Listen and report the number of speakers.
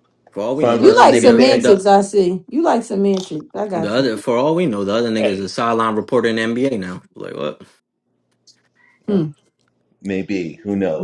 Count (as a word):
three